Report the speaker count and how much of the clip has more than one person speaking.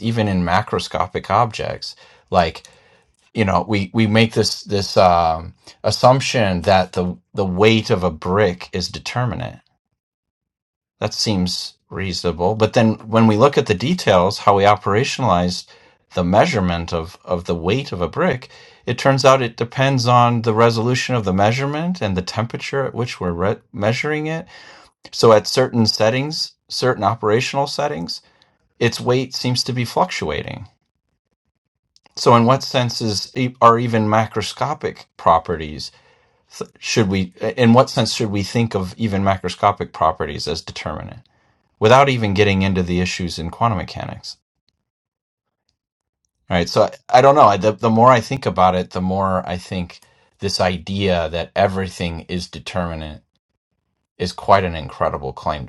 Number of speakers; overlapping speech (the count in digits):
1, no overlap